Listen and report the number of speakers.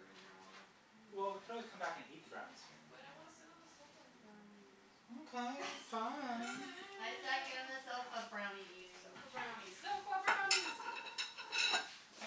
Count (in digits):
3